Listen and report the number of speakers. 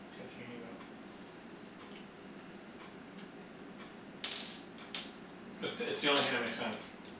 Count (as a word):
one